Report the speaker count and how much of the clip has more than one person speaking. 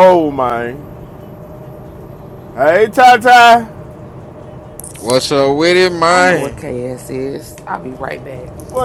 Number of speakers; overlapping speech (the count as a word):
three, about 5%